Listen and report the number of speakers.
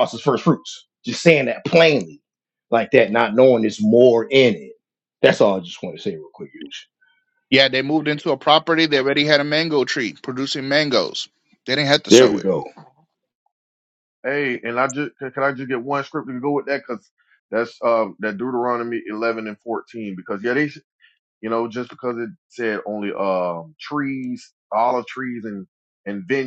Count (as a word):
three